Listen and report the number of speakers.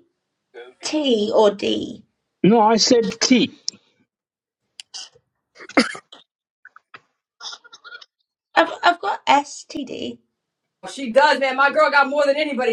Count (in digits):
3